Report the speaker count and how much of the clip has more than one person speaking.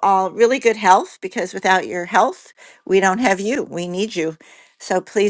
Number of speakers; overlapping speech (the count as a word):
one, no overlap